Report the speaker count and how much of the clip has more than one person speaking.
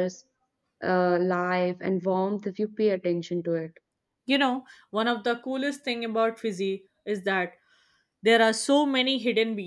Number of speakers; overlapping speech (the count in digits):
2, no overlap